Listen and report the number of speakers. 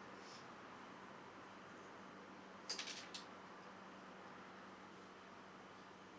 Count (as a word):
zero